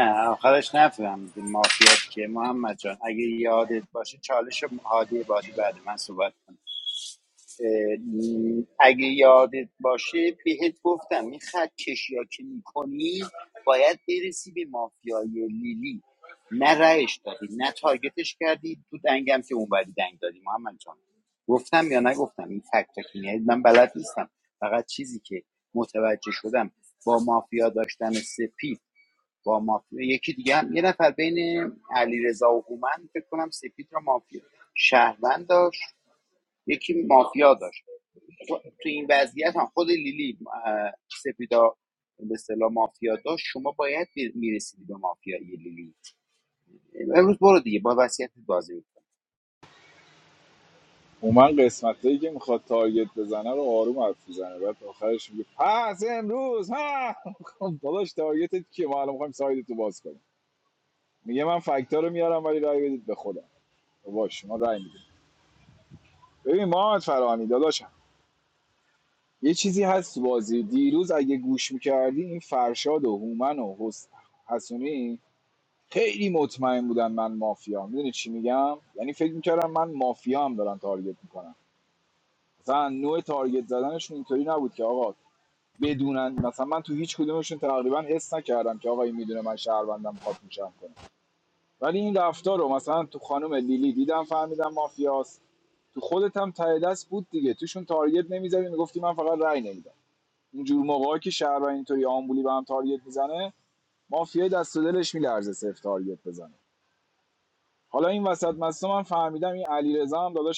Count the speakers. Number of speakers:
2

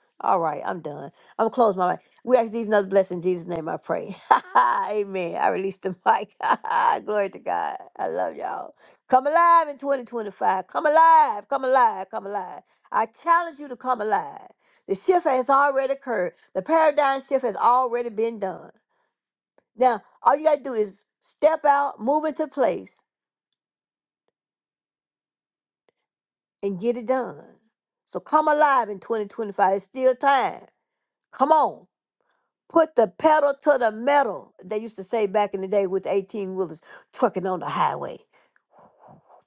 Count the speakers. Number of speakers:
1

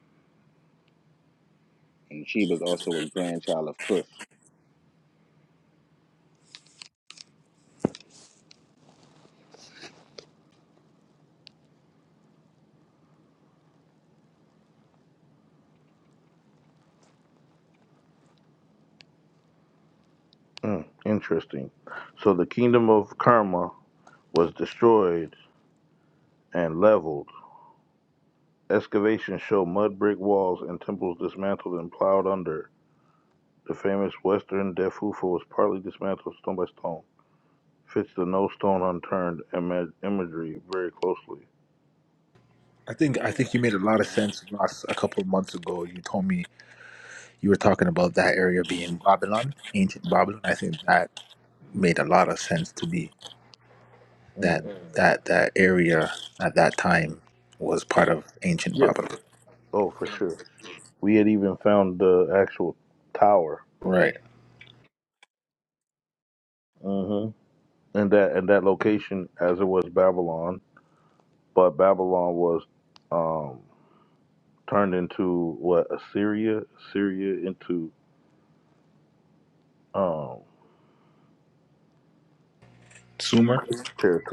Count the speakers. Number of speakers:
3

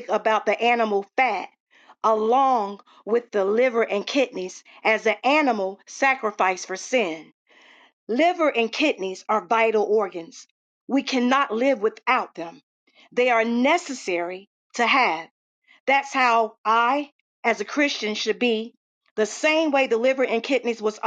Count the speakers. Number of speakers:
1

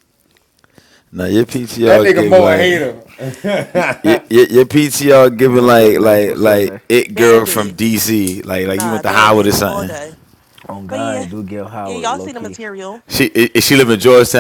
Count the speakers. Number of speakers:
4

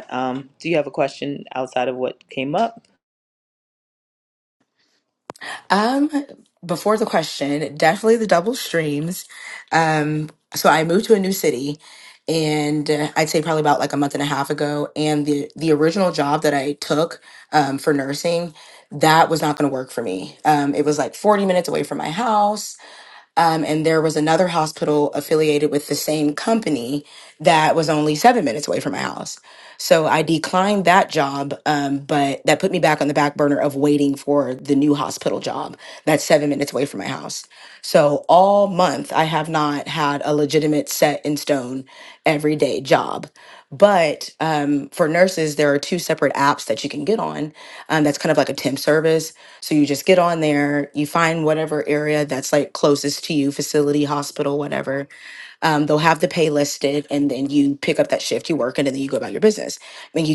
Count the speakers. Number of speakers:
2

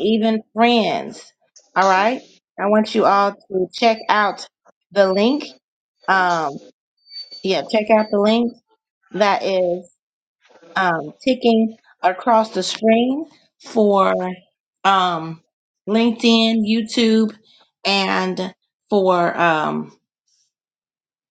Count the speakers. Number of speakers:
1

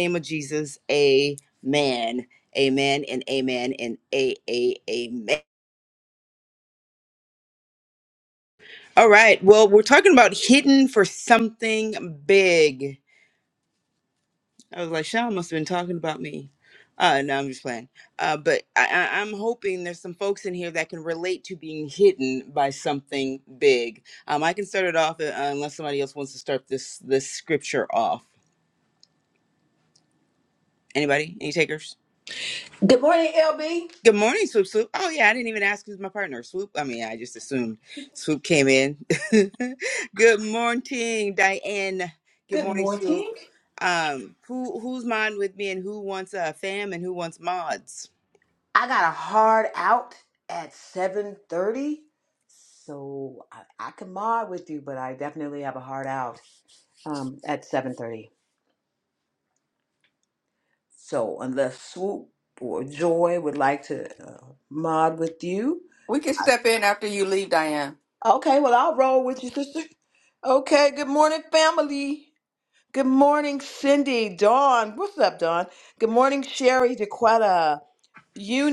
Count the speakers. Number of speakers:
3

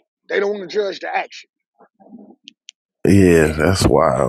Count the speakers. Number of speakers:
2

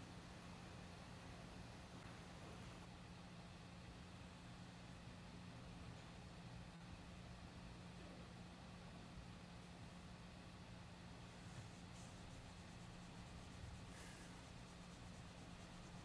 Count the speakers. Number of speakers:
0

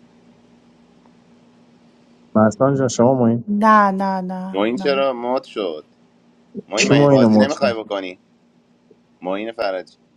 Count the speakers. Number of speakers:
3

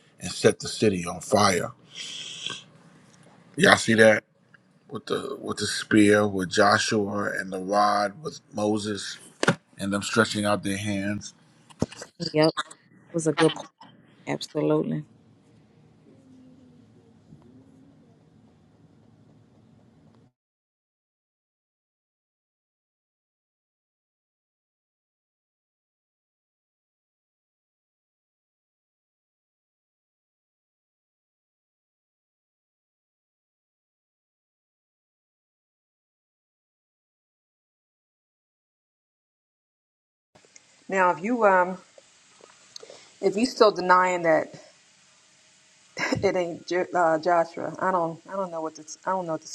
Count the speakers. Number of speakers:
3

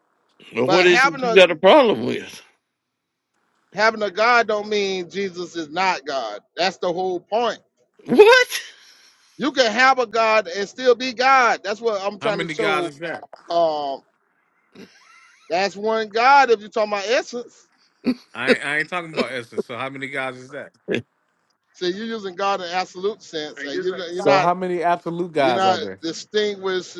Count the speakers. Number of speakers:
3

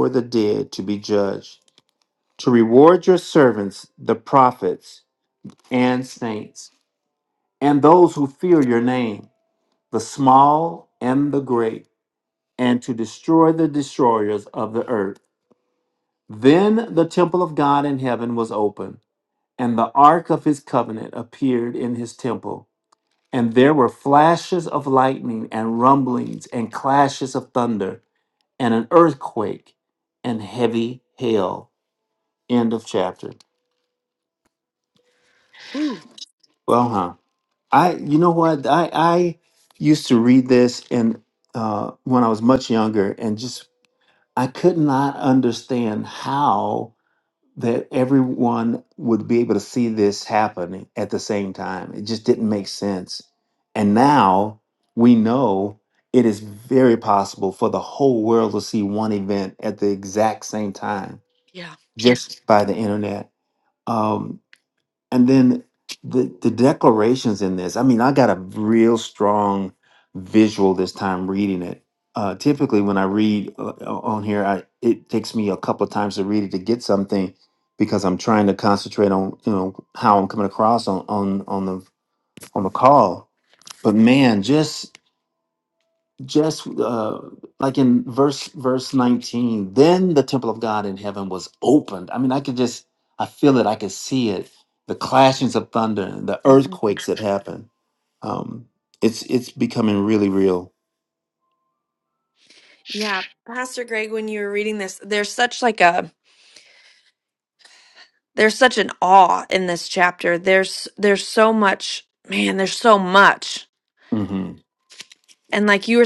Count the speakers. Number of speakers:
2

